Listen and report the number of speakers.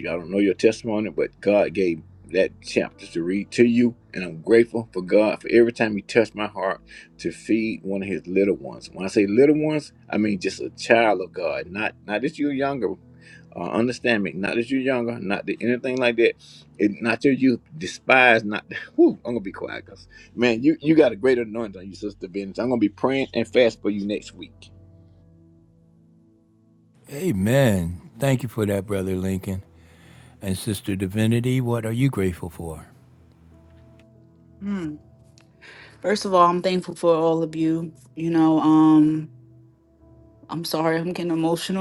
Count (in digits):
3